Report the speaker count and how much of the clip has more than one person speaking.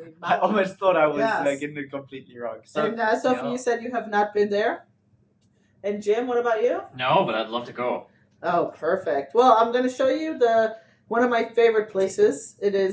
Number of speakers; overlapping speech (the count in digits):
3, about 12%